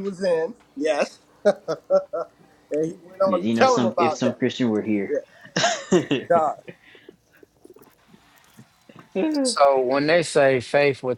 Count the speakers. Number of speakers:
3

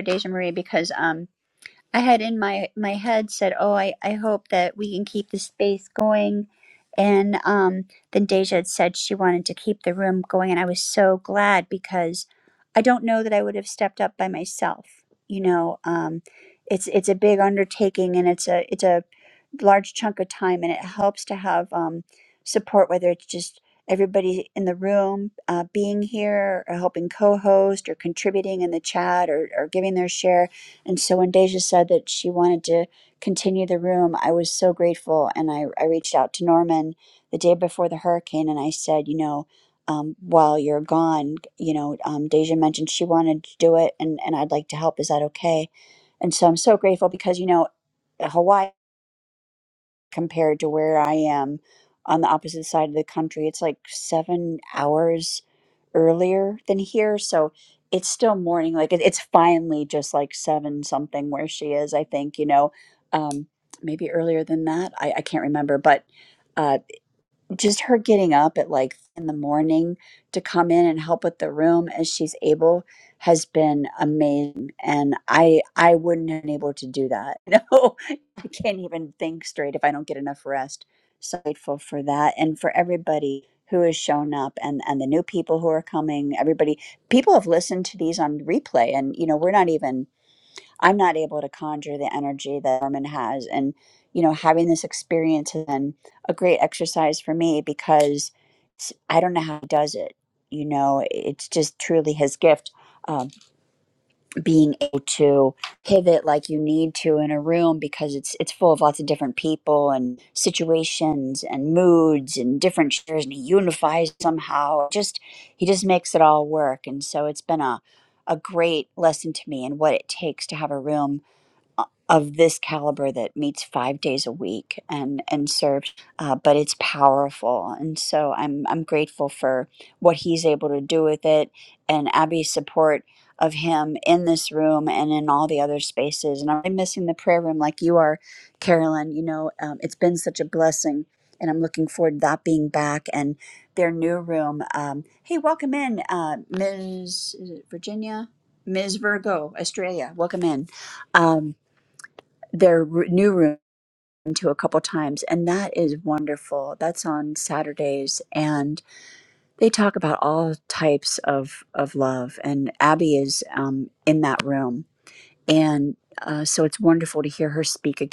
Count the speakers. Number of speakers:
1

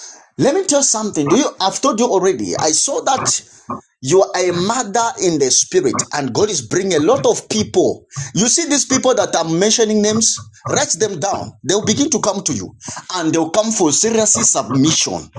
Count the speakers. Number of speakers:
1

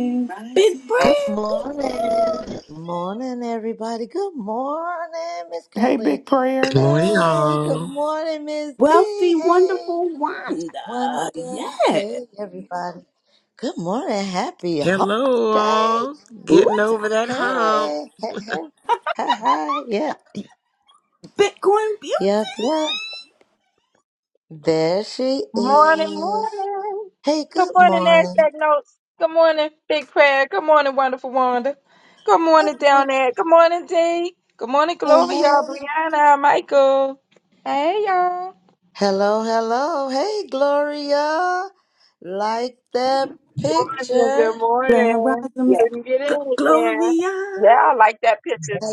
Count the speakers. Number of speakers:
6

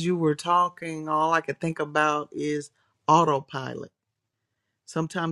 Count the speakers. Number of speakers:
1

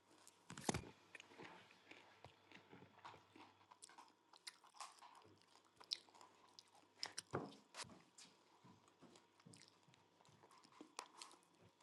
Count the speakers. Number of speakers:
0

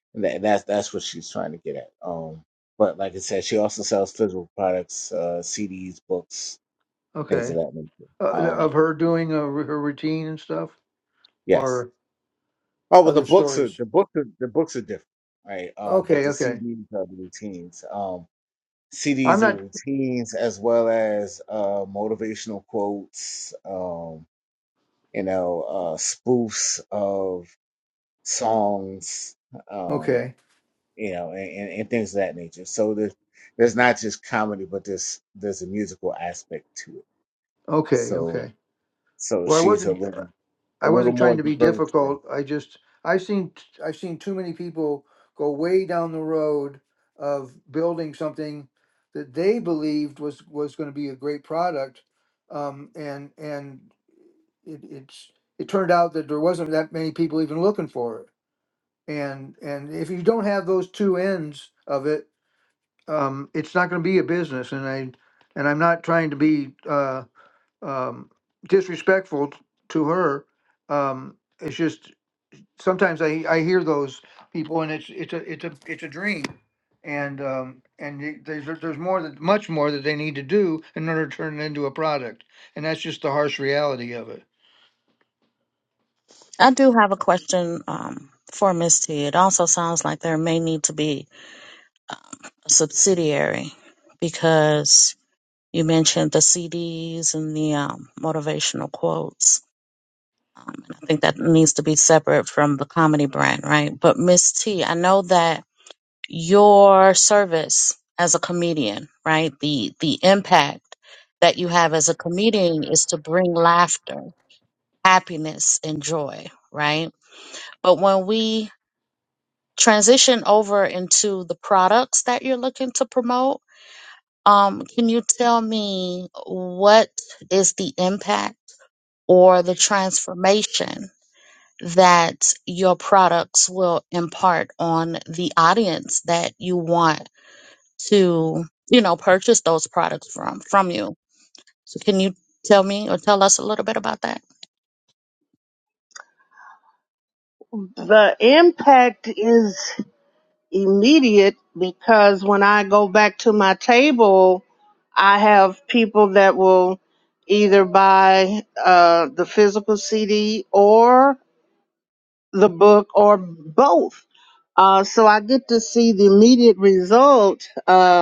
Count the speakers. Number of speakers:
4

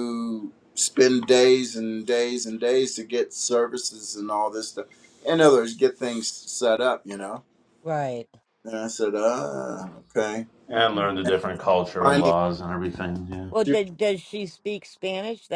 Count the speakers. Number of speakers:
3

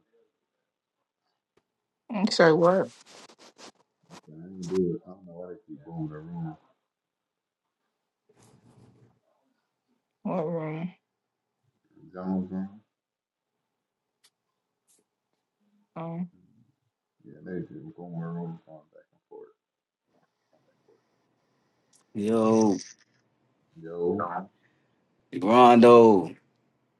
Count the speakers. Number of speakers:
3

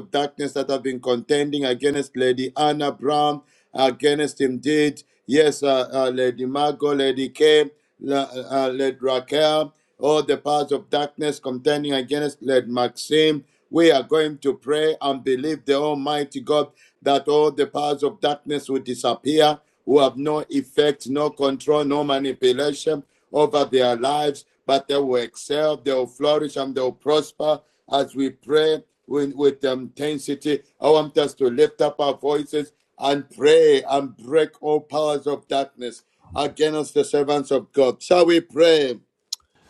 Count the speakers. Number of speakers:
1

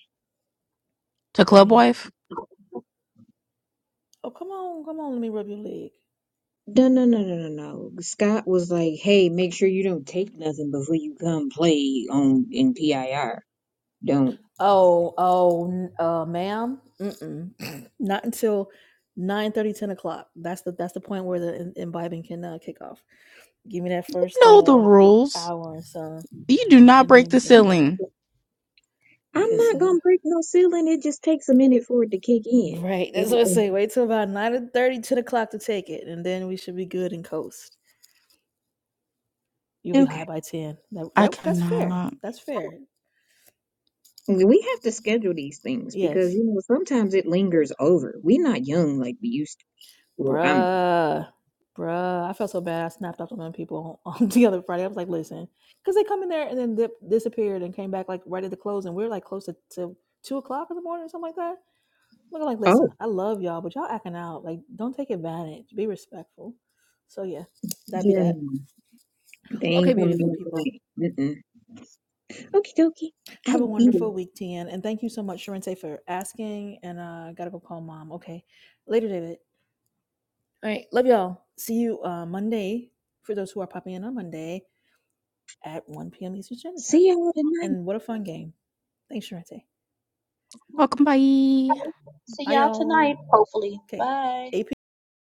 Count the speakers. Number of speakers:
4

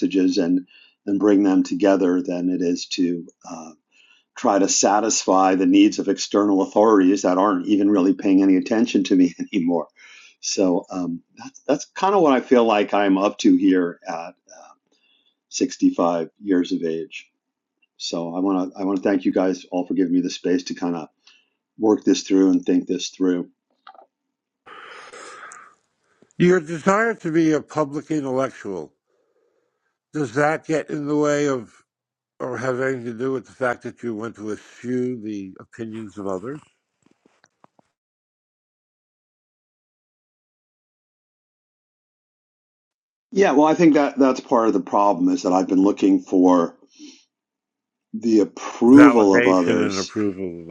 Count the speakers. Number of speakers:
2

